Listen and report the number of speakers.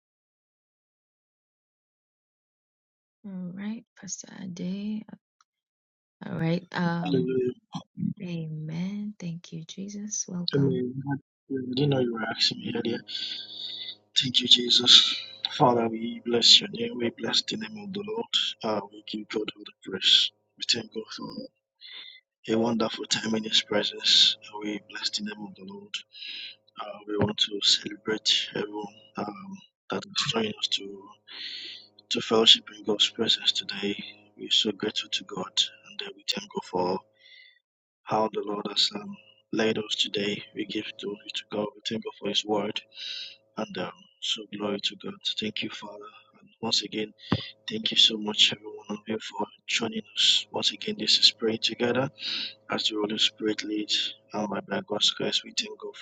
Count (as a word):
two